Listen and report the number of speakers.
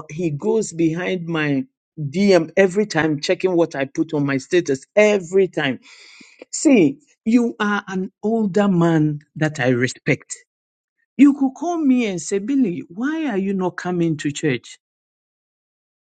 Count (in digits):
1